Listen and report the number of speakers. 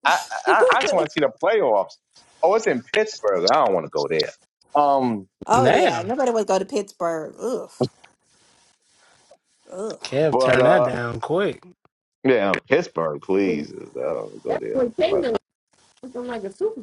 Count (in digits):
4